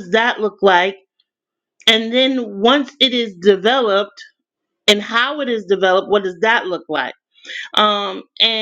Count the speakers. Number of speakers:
one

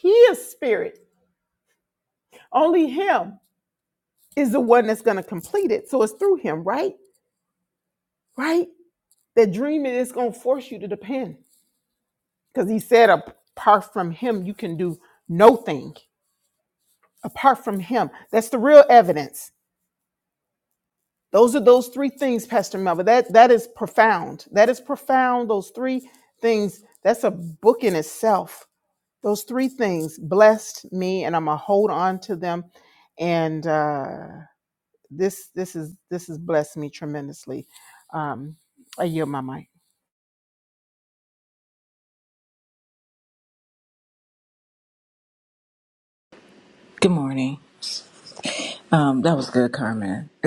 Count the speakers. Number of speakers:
two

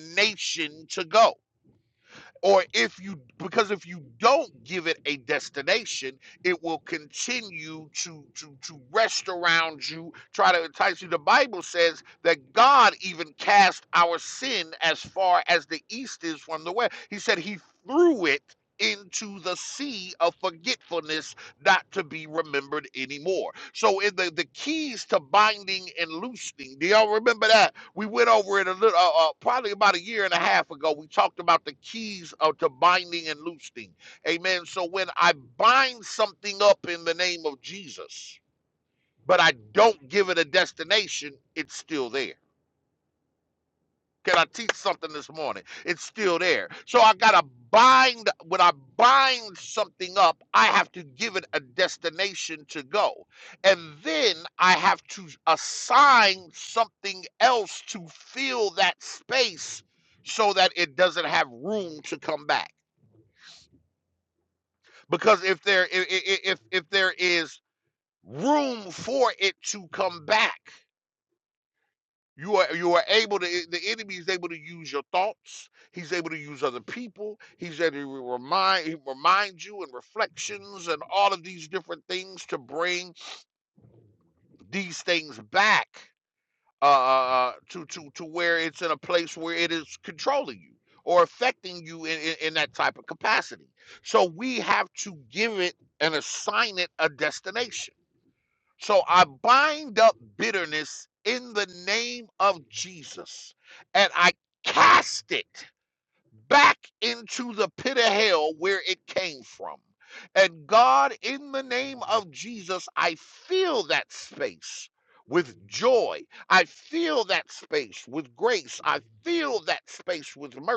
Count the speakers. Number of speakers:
one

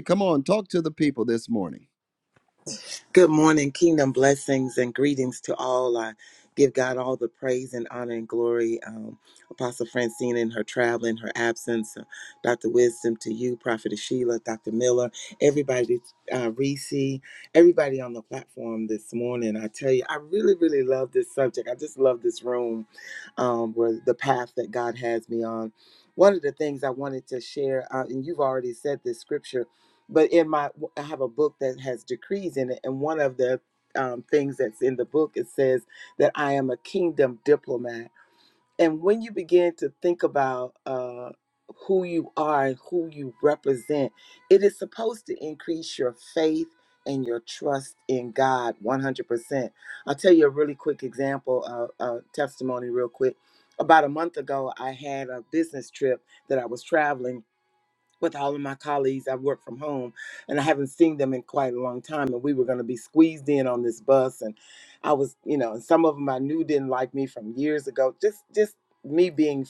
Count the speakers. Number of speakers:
two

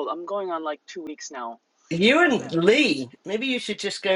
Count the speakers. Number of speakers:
two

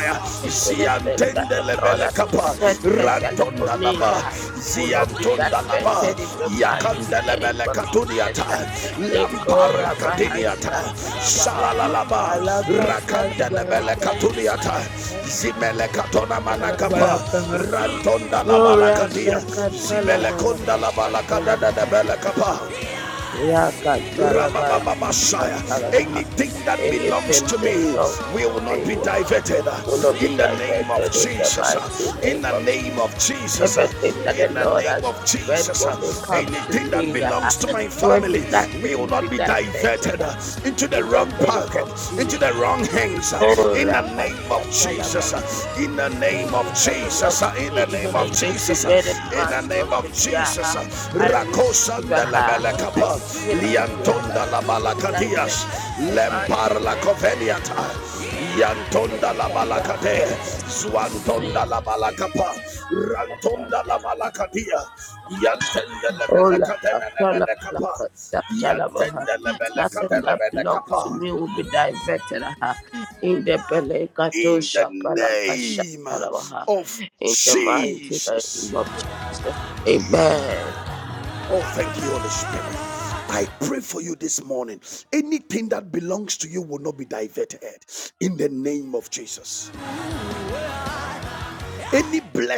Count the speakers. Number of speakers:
two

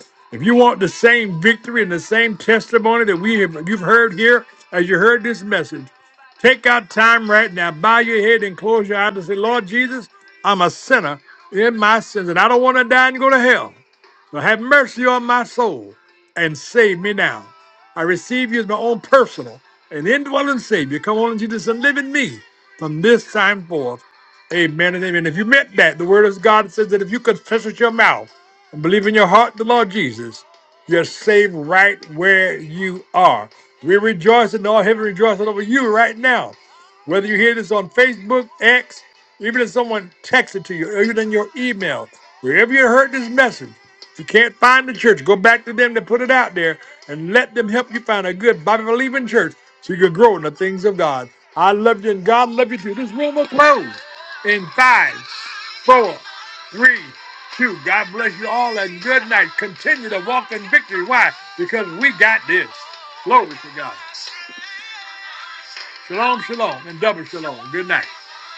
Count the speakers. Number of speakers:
one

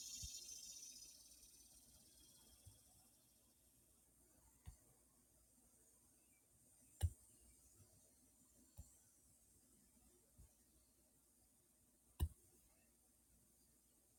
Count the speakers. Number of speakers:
zero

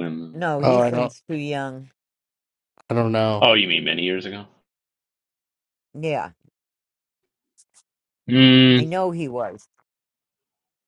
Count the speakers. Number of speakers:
three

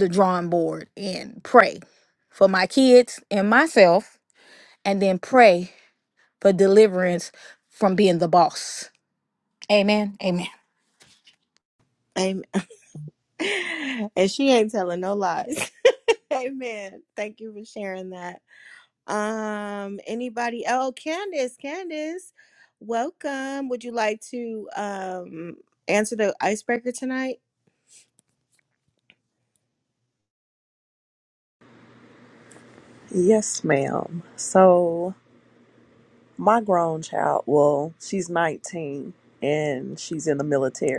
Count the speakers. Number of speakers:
three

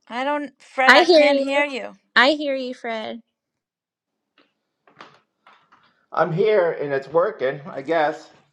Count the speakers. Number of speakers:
three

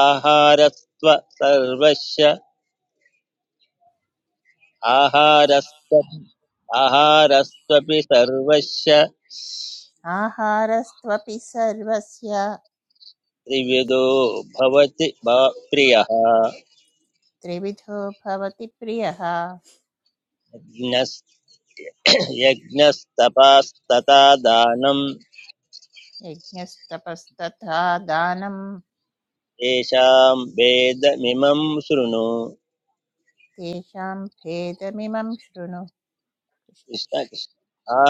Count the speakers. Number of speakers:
two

